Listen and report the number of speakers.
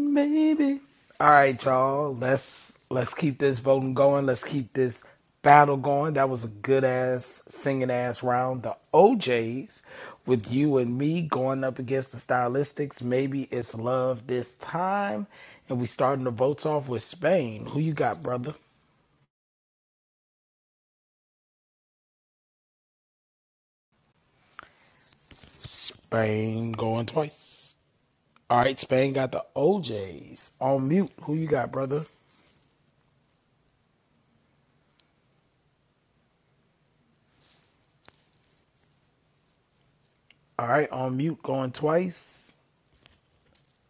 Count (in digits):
1